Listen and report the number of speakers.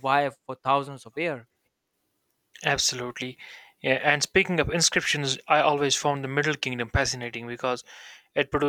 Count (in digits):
2